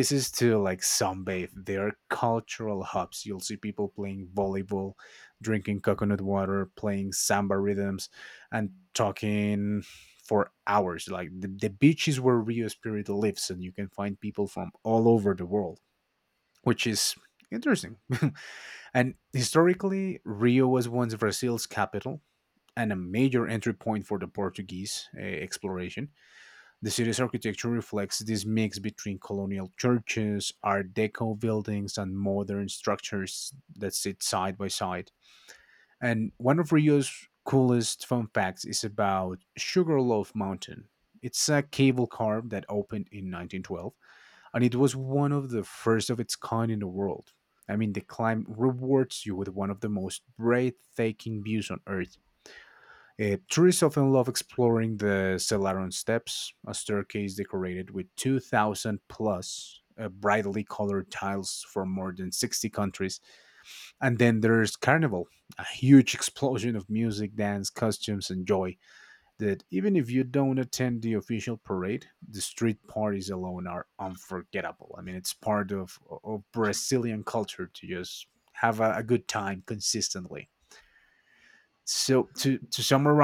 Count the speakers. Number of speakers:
one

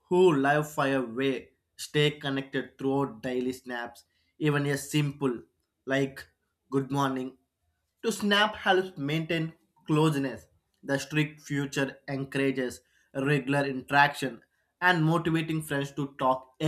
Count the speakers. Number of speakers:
one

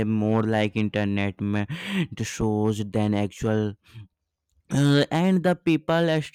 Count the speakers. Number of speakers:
one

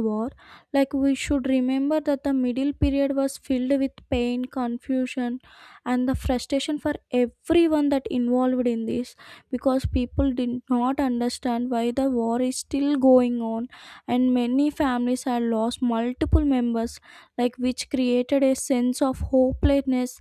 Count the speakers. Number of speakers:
one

